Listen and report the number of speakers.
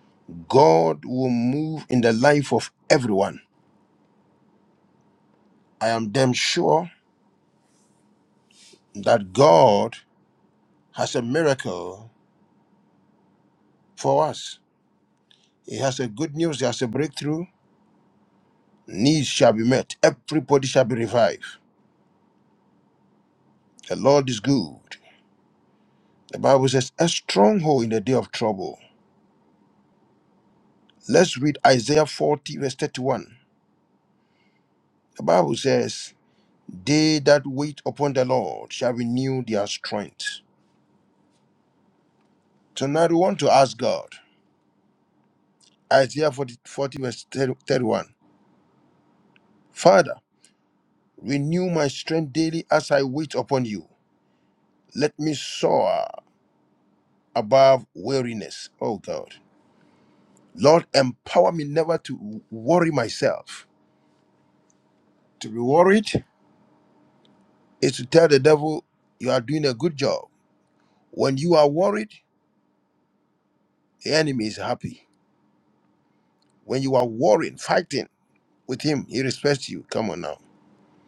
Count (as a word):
one